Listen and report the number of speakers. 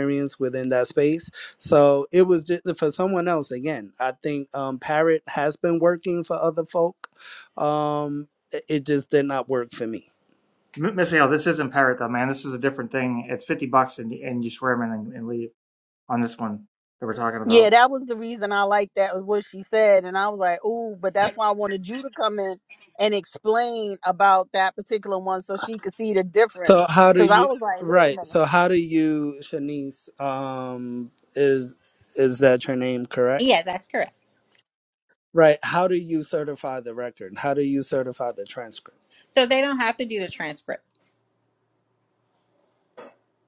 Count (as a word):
four